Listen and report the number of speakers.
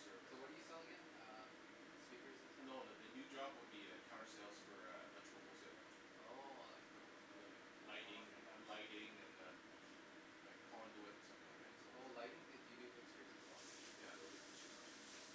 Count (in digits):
2